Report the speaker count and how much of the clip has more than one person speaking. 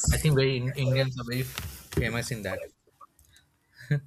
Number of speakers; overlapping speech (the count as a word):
one, no overlap